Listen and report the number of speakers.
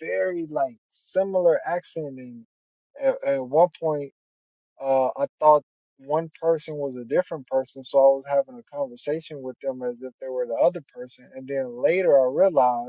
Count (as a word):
one